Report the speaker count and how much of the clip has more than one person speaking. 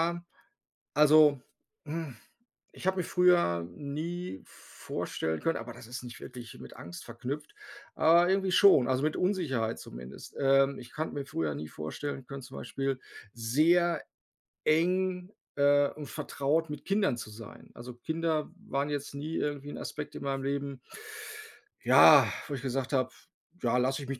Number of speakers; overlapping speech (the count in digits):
1, no overlap